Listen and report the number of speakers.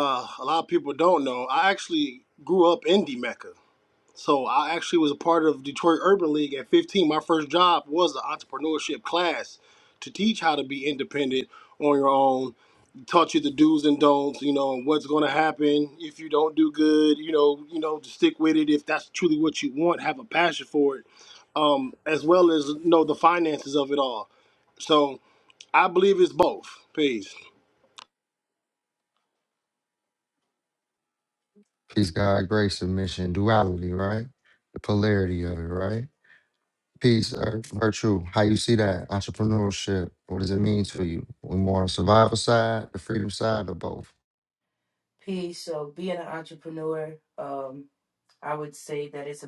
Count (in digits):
3